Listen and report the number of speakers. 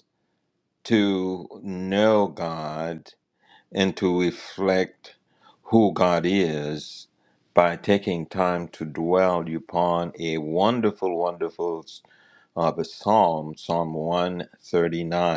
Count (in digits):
1